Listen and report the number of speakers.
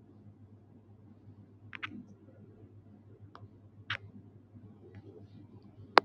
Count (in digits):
0